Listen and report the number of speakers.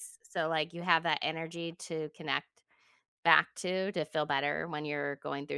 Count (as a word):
one